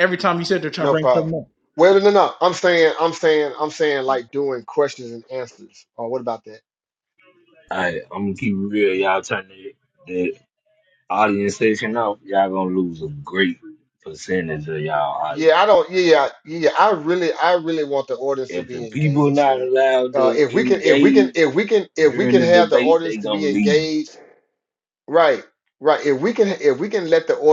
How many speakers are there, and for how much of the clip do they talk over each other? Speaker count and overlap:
three, about 17%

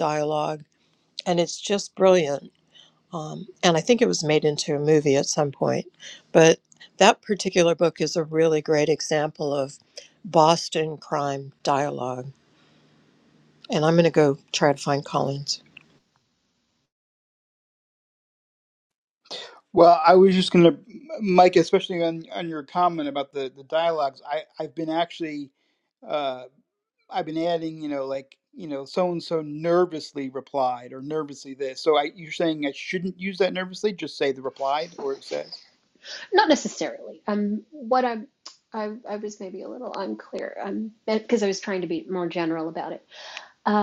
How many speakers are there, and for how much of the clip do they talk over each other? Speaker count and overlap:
three, no overlap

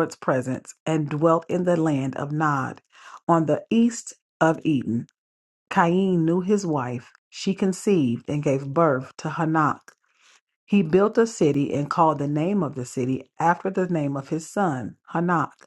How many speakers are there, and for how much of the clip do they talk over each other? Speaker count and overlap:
one, no overlap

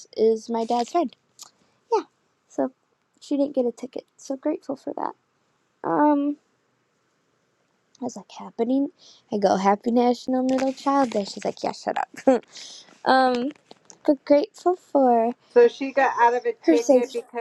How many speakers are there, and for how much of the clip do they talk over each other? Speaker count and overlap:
two, about 3%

